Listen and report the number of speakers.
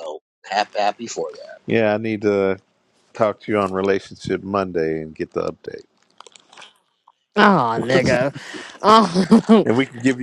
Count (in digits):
3